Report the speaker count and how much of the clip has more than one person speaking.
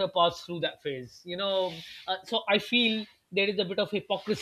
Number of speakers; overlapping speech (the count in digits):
1, no overlap